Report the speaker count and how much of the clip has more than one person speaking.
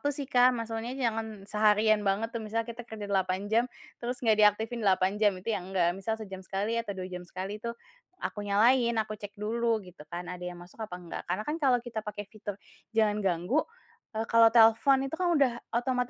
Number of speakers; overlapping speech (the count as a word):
one, no overlap